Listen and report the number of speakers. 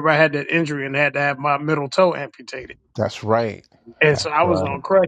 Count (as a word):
two